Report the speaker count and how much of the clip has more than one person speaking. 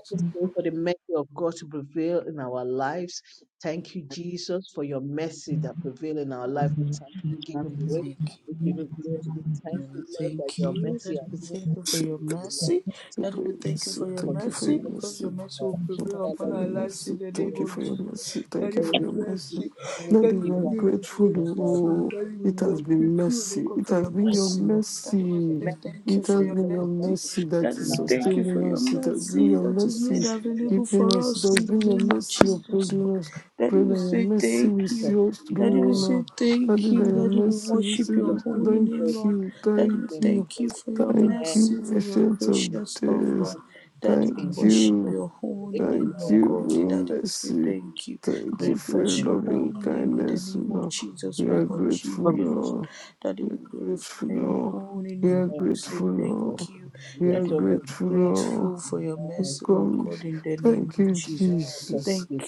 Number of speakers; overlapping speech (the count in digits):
3, about 71%